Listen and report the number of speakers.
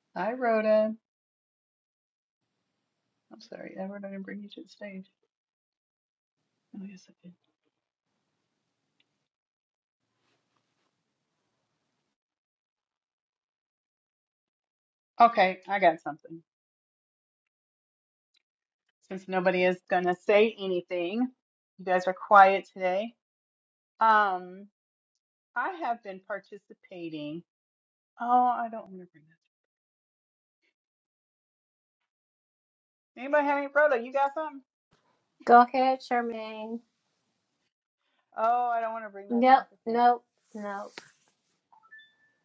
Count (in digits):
2